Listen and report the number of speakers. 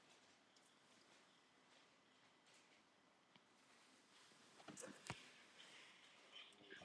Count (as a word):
zero